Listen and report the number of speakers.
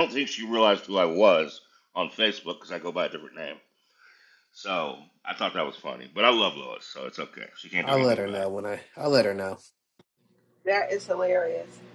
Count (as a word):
three